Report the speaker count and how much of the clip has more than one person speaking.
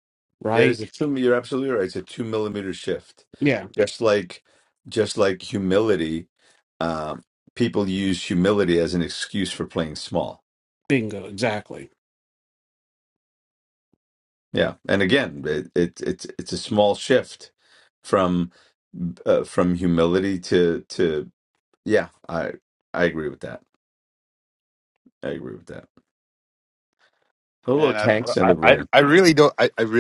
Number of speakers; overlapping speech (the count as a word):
three, about 5%